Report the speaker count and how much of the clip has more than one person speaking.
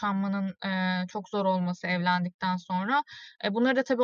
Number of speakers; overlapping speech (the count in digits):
1, no overlap